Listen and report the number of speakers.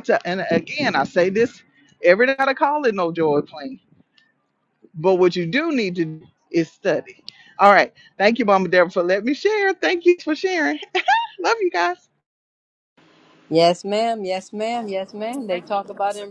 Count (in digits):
2